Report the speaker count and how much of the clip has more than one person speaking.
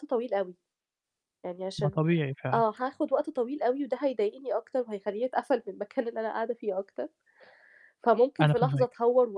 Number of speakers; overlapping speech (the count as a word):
two, about 8%